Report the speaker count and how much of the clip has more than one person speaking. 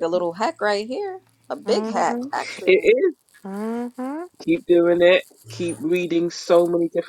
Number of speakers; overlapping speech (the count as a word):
three, about 12%